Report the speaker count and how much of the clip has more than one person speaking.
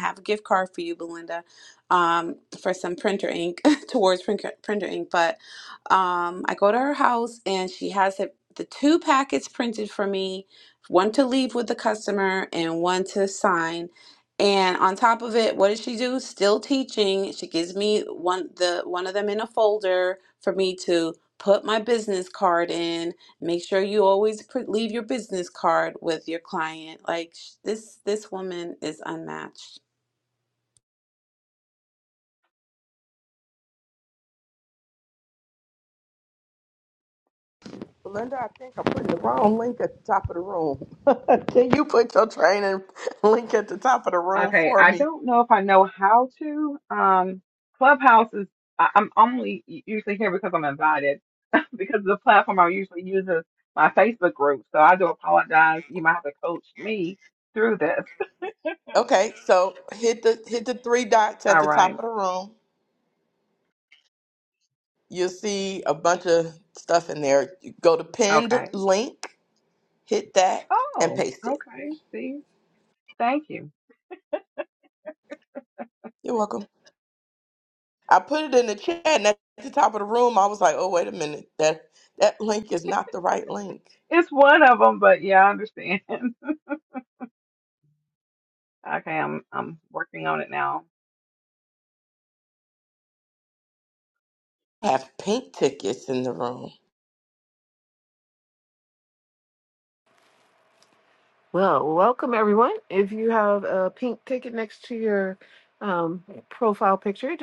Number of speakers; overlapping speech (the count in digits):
4, about 2%